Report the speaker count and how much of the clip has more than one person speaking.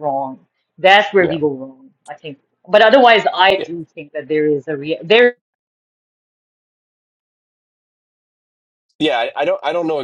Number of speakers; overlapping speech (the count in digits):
2, about 3%